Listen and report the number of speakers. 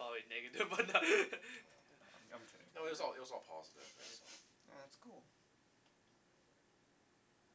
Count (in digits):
3